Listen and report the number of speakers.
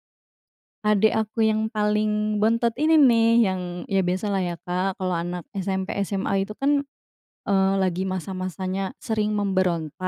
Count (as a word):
one